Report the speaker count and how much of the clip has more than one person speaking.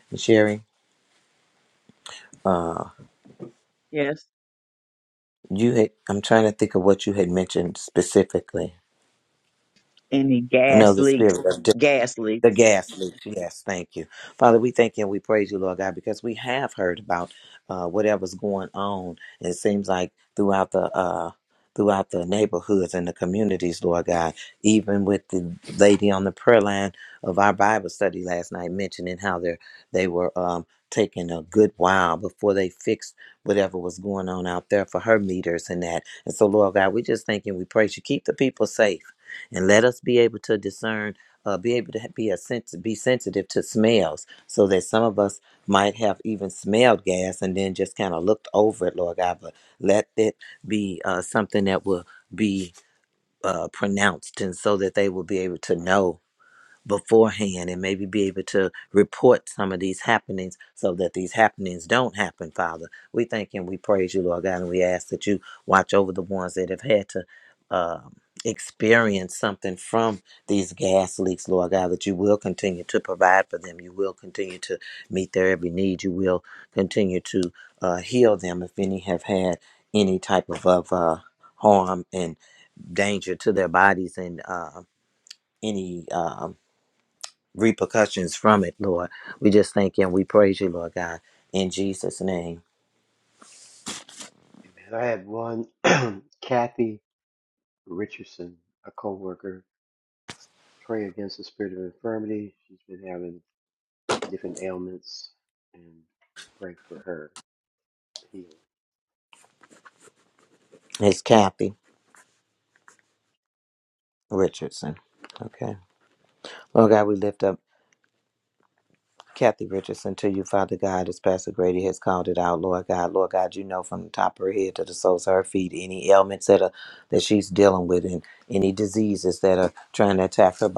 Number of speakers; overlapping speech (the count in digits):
3, under 1%